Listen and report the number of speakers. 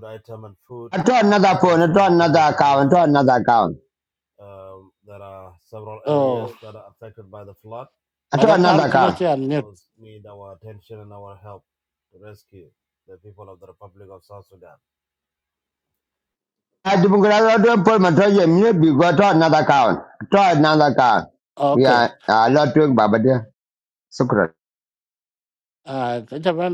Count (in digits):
3